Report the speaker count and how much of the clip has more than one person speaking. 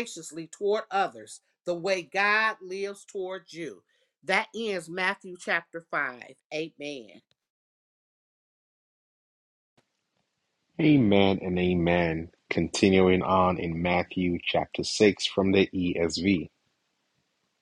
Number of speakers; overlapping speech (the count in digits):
2, no overlap